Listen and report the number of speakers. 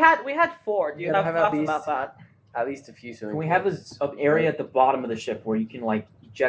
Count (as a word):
three